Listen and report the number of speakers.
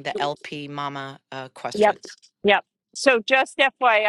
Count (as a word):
two